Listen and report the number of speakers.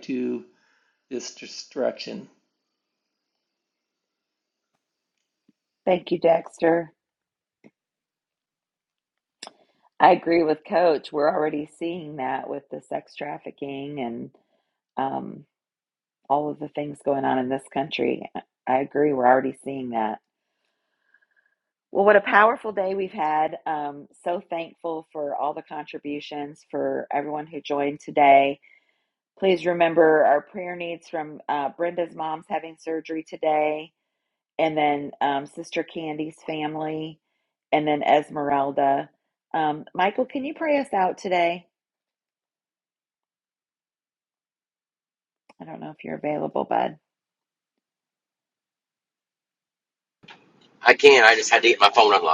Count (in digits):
3